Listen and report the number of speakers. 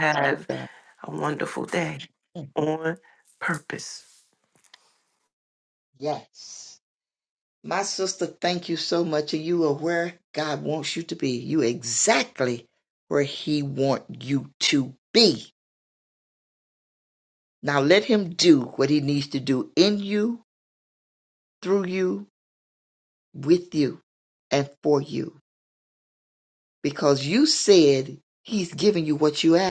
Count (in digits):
2